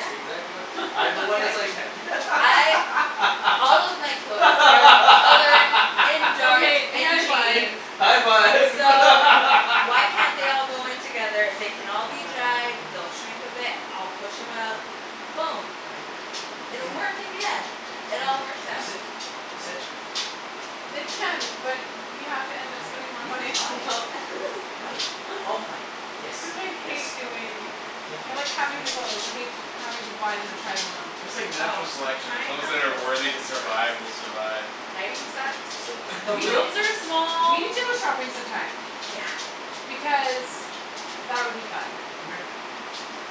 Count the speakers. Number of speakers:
four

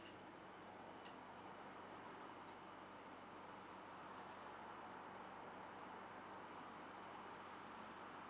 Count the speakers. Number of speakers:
zero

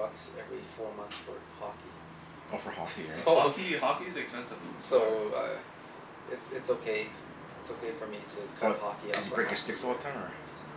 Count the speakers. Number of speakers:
three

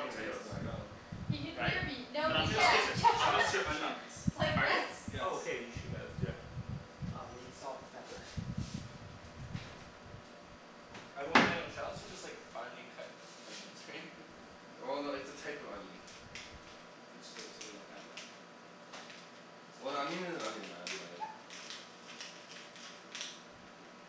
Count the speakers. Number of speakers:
four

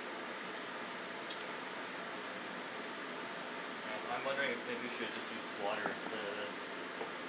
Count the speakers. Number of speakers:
one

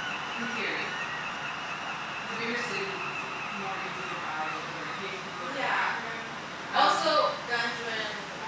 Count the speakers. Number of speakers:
two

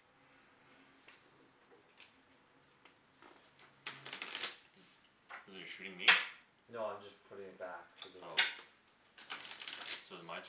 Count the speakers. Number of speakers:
two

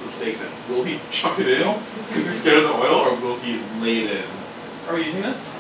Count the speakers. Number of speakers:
two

